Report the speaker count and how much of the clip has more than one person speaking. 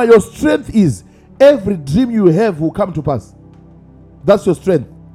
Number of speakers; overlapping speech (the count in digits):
1, no overlap